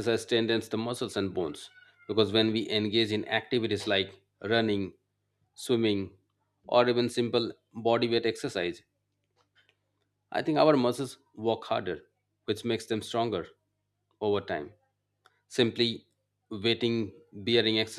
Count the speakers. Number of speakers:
1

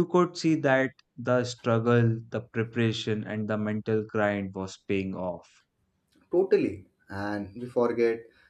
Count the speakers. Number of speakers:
2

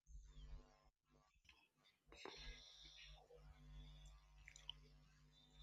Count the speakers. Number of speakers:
0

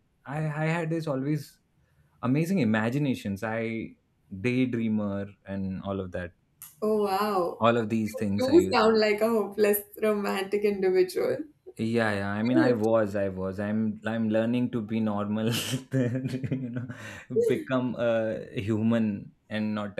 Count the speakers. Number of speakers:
2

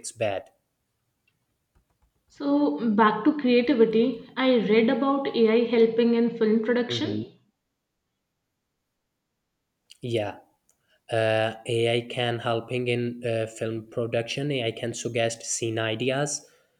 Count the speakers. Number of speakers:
2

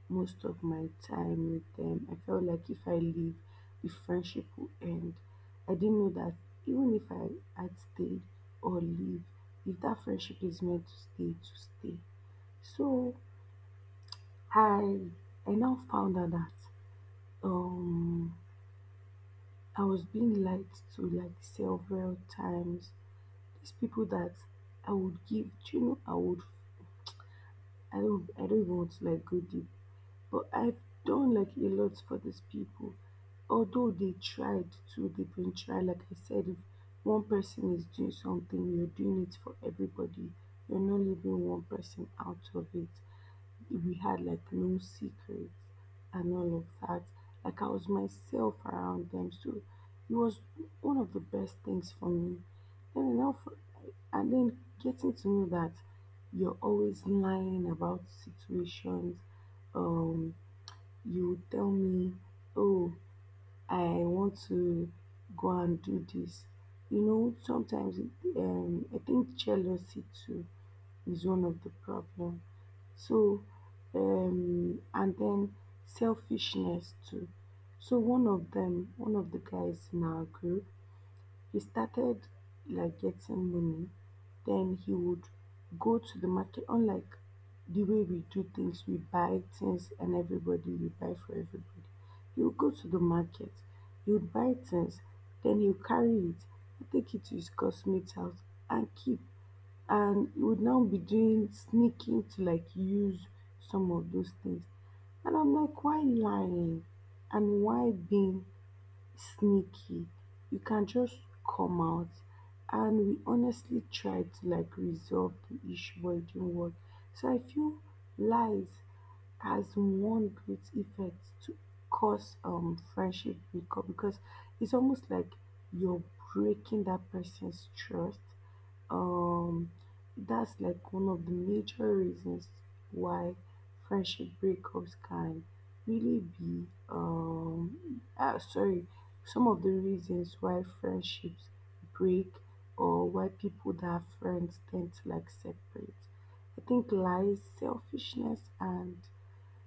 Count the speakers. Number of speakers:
1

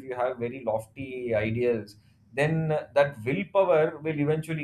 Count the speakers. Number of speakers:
1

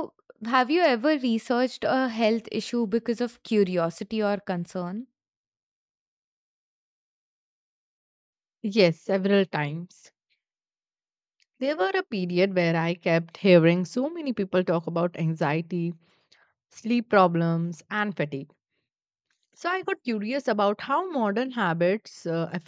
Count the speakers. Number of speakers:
2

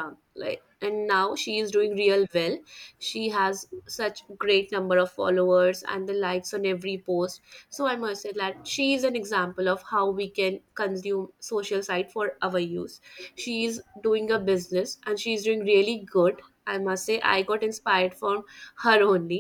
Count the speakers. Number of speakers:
1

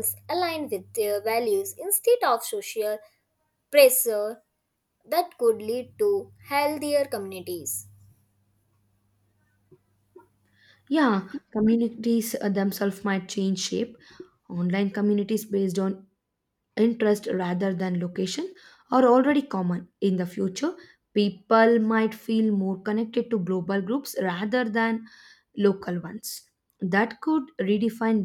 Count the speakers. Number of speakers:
2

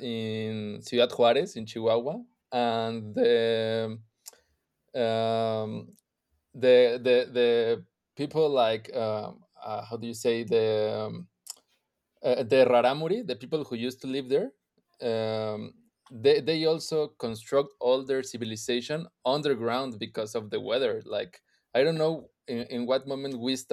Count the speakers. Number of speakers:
1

